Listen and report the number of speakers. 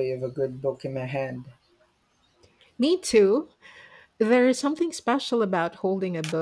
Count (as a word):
two